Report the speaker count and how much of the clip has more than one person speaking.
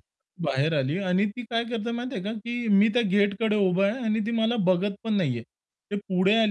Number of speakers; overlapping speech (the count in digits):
1, no overlap